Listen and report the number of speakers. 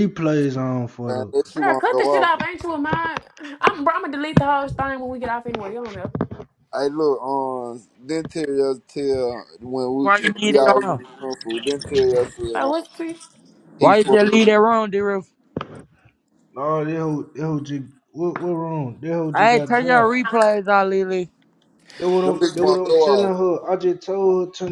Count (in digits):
4